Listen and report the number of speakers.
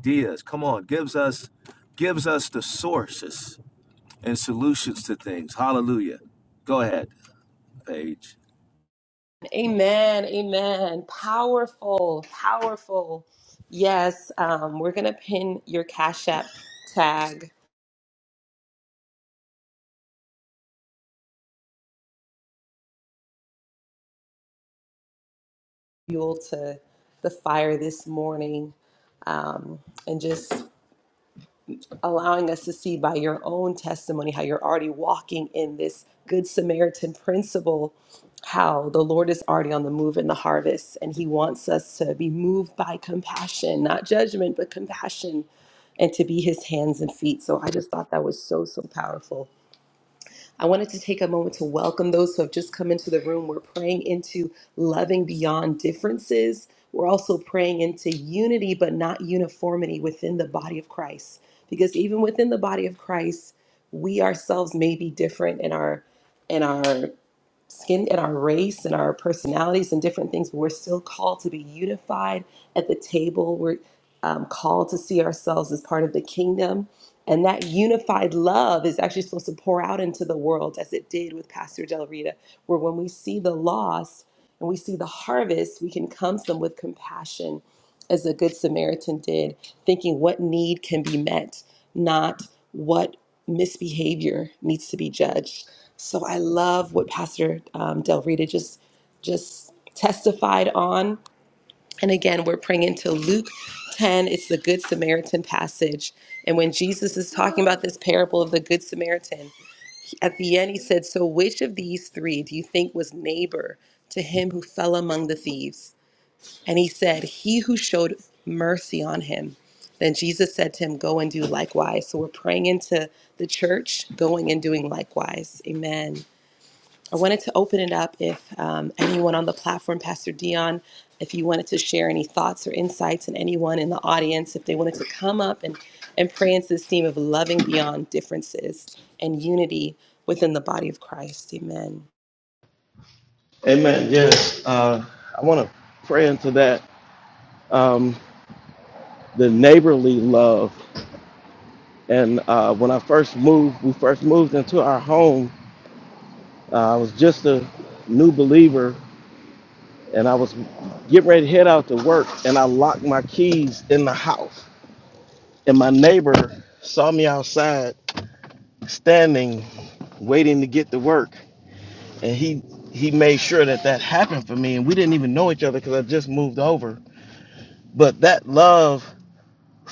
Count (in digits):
3